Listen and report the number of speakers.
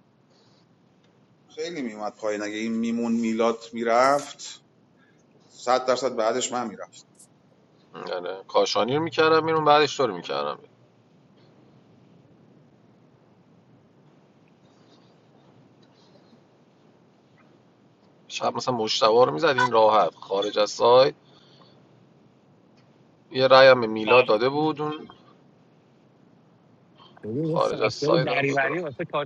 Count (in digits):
3